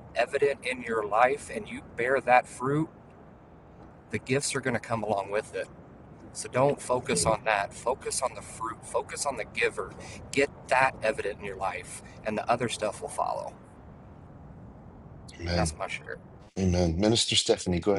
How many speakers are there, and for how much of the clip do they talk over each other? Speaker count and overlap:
2, about 1%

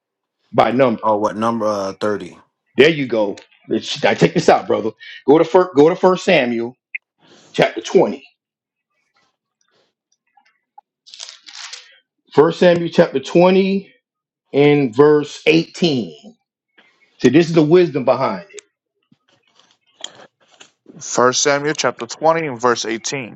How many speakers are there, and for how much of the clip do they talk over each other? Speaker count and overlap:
3, under 1%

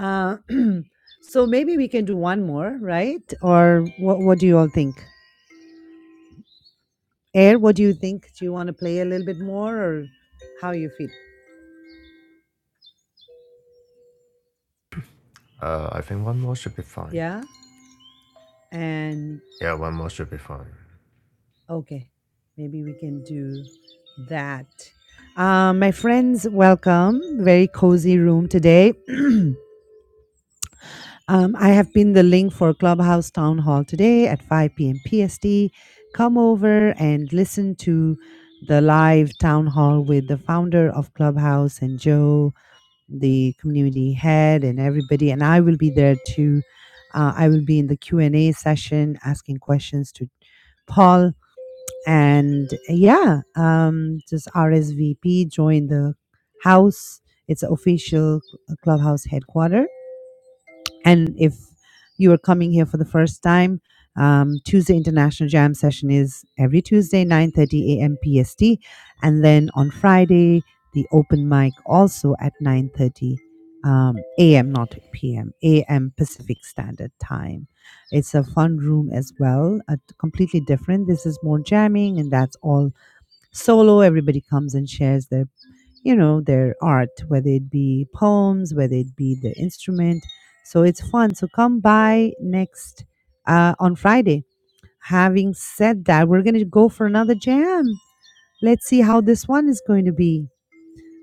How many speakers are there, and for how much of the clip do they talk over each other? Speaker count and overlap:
2, under 1%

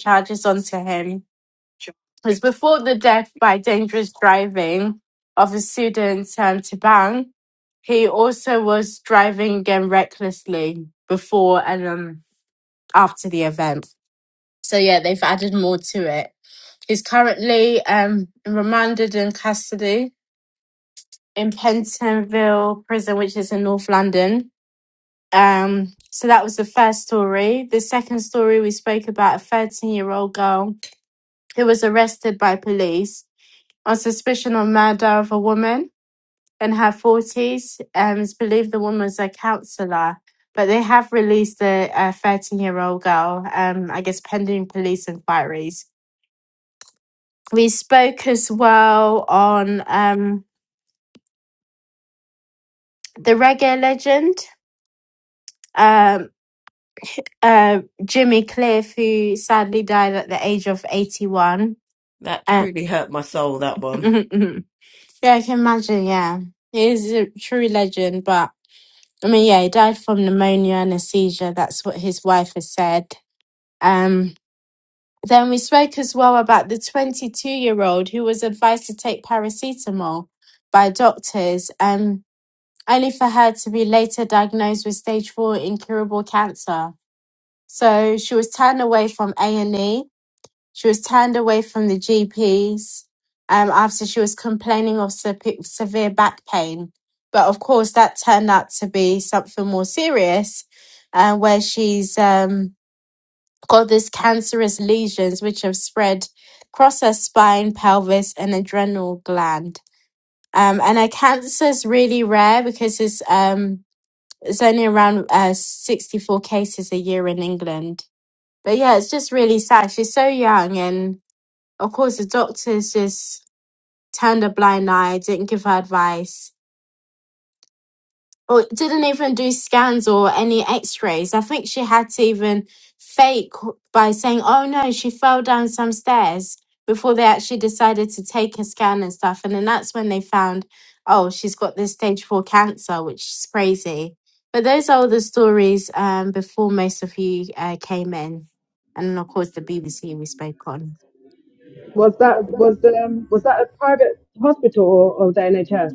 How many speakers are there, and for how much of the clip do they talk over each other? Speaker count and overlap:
3, under 1%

